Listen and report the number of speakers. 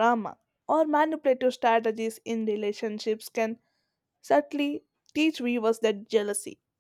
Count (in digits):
1